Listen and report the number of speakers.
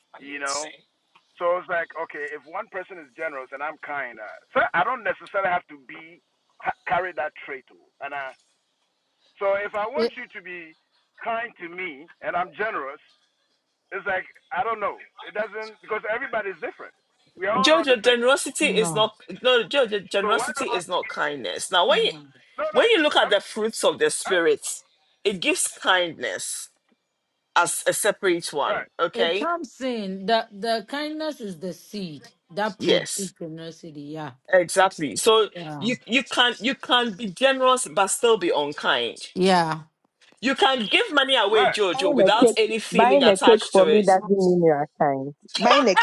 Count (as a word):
four